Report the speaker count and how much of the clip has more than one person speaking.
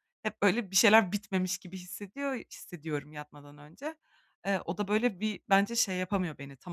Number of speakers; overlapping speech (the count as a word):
one, no overlap